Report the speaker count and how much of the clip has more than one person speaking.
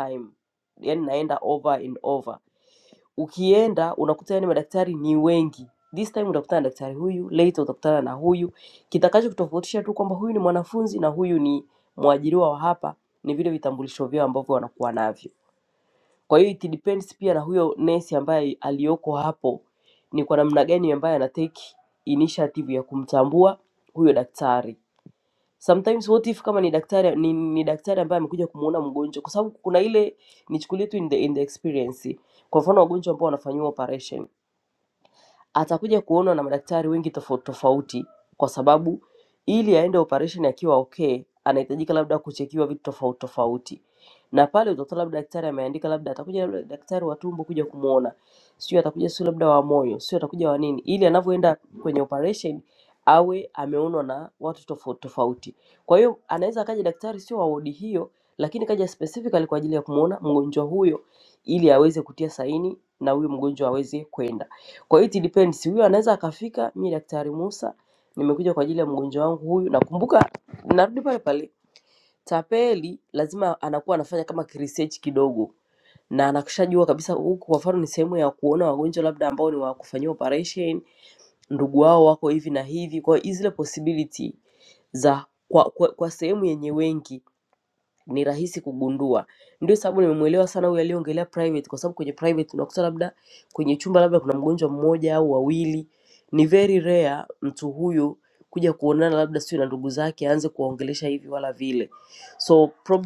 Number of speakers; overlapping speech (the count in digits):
1, no overlap